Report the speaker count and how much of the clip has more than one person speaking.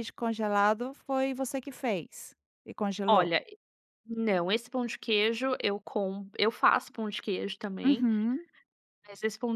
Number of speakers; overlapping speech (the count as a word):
two, about 4%